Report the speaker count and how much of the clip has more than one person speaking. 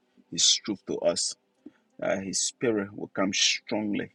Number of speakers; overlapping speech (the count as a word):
one, no overlap